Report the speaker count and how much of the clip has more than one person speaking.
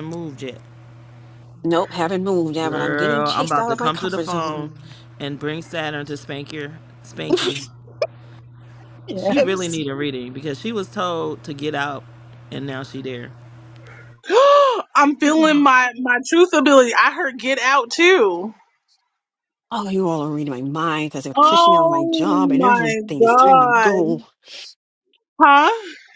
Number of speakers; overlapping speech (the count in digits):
3, about 23%